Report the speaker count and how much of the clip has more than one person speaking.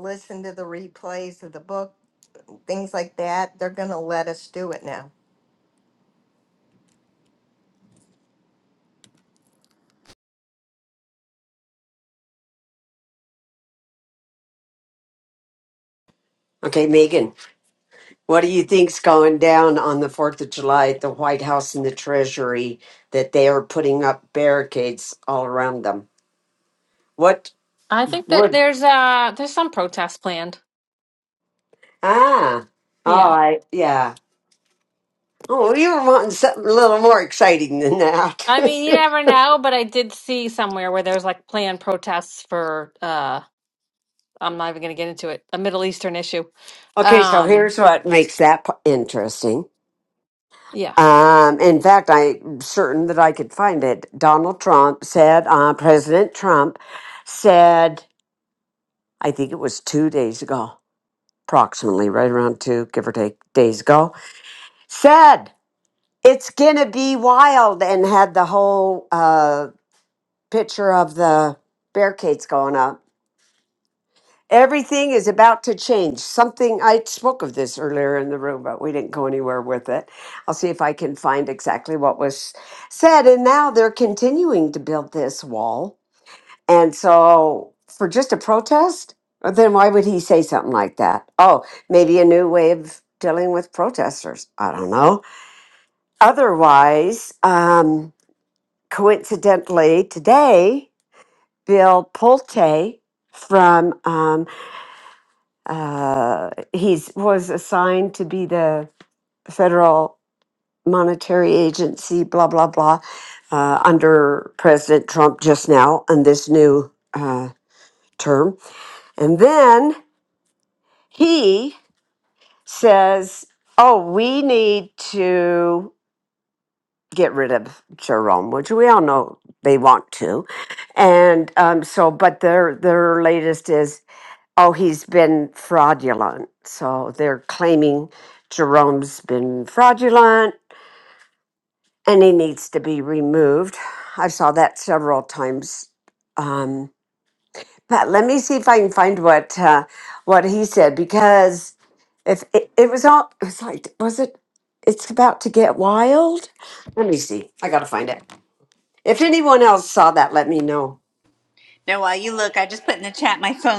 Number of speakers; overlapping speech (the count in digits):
4, about 1%